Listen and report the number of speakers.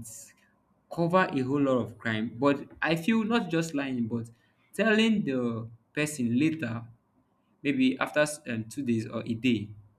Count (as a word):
one